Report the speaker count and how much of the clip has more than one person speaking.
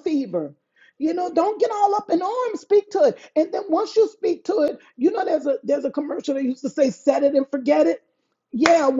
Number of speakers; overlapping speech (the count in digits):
1, no overlap